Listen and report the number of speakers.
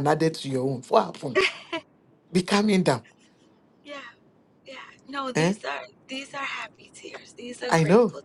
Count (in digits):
2